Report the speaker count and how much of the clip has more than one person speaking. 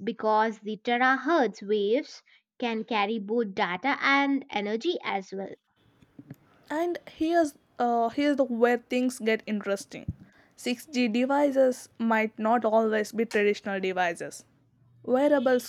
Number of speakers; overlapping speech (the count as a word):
two, no overlap